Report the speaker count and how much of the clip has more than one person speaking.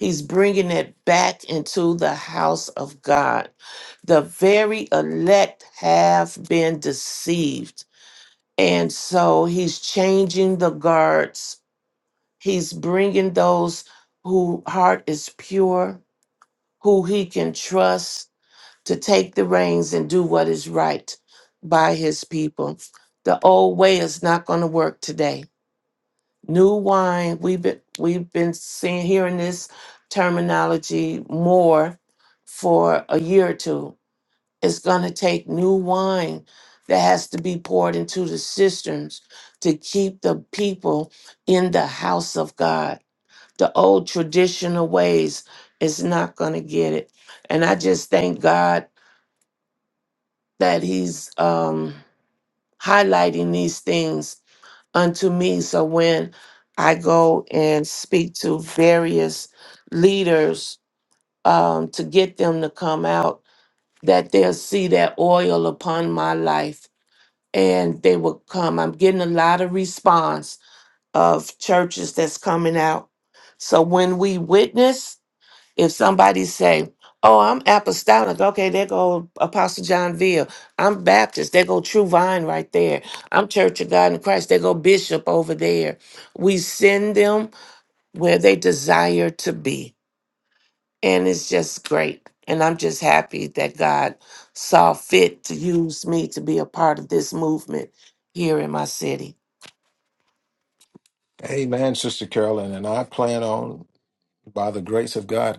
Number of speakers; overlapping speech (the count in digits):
2, no overlap